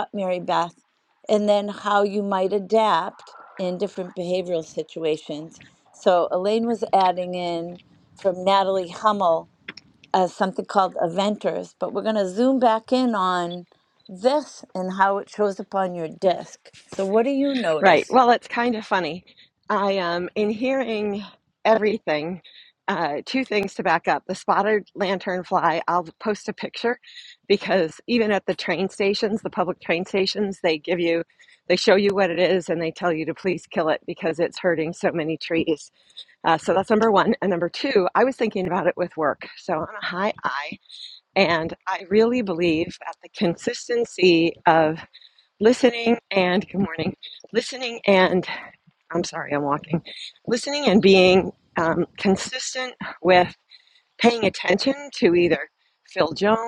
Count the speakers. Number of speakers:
2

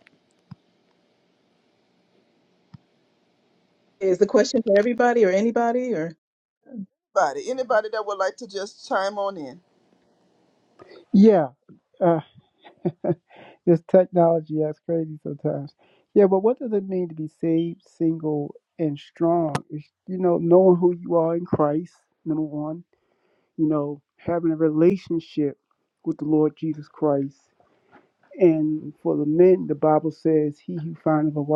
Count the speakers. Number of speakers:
3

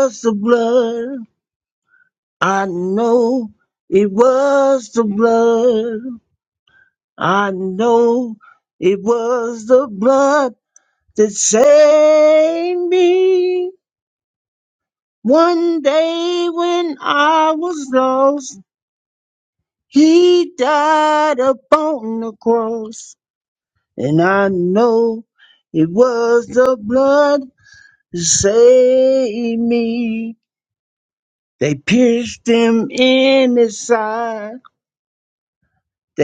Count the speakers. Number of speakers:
1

